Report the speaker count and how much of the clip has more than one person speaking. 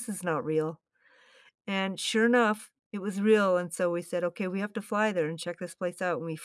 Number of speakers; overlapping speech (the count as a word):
one, no overlap